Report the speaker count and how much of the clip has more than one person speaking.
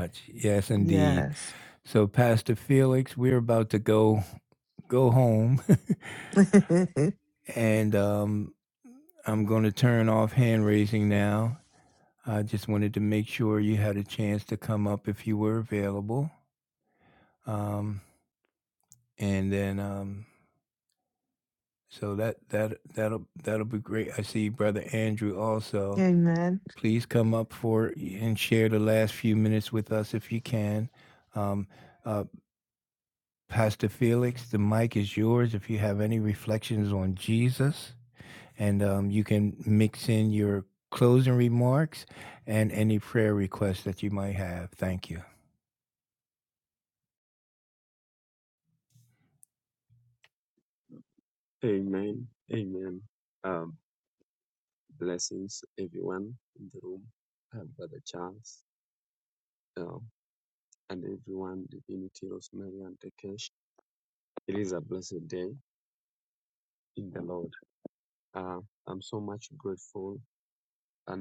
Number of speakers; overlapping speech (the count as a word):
three, about 1%